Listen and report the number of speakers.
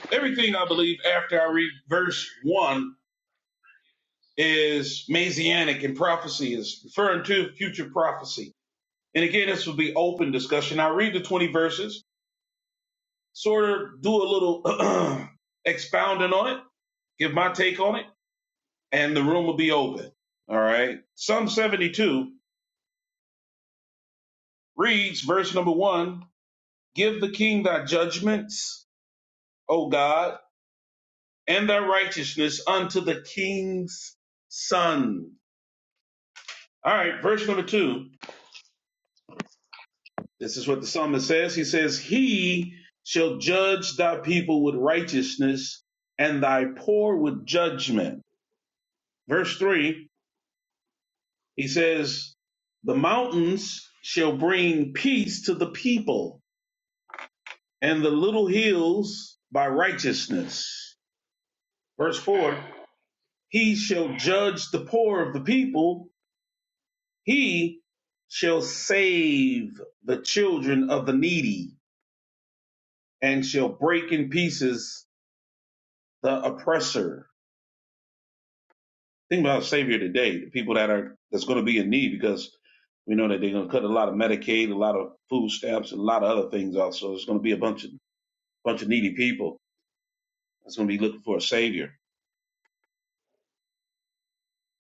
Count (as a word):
one